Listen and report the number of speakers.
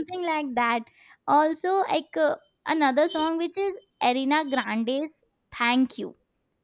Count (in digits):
1